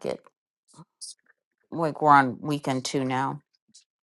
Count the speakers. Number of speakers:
1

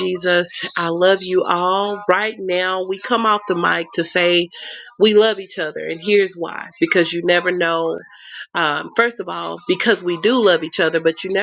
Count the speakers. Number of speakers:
1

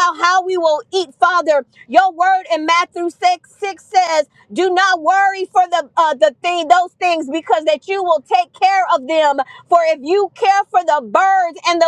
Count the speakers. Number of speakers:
1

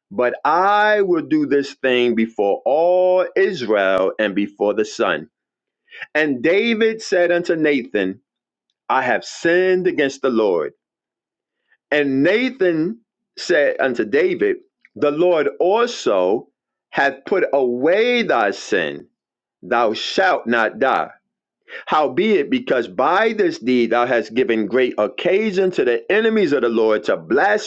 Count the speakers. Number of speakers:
1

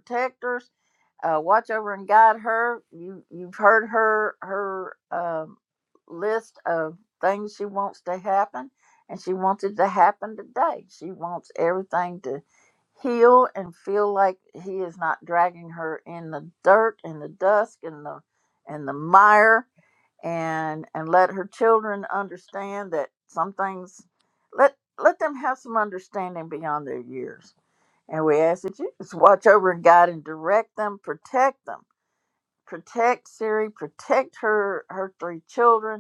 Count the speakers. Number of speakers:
1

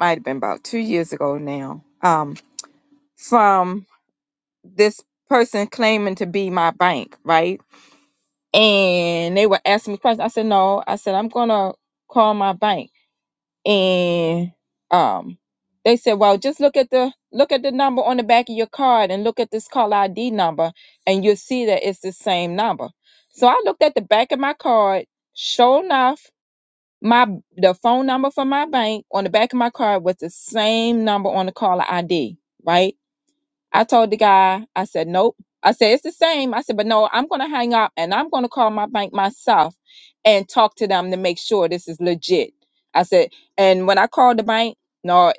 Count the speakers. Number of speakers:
1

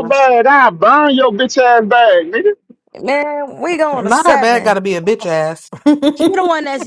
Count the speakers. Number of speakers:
3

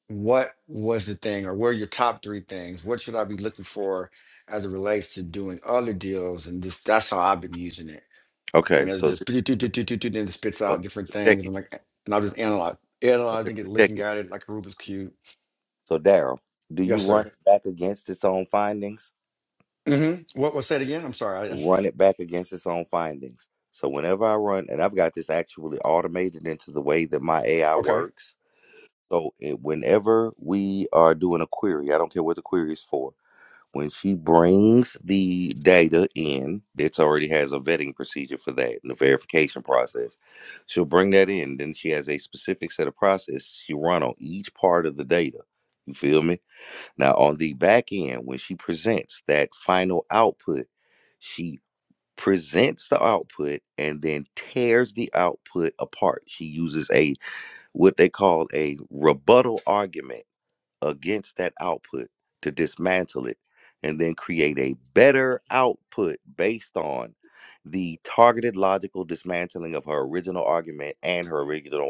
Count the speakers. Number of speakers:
2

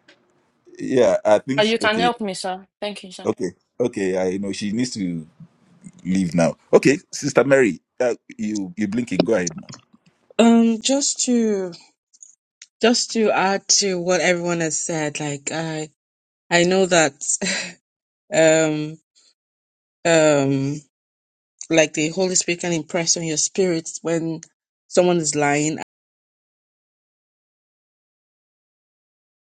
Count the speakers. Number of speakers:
3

